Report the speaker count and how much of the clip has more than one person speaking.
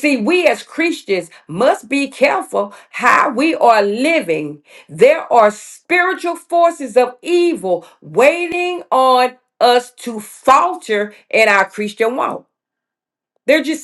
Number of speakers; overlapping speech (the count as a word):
one, no overlap